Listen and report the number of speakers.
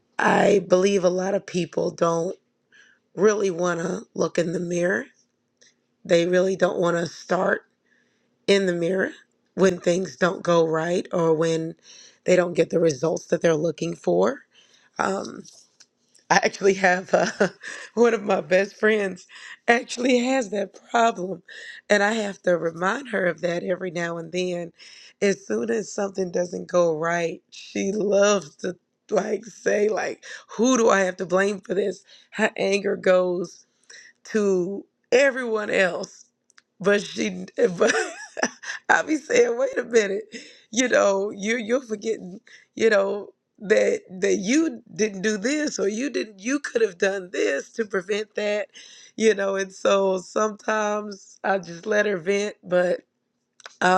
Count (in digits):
1